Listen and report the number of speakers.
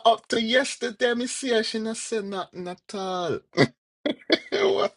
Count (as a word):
one